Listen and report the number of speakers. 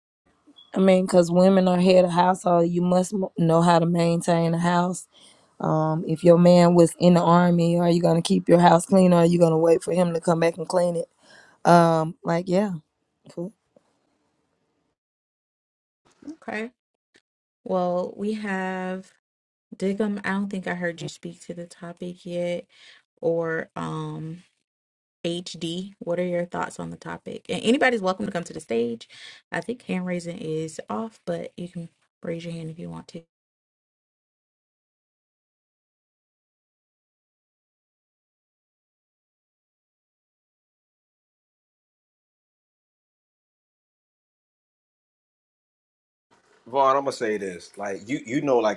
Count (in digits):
3